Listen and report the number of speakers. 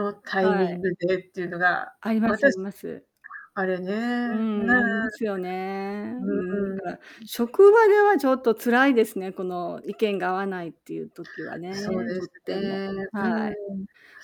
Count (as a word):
two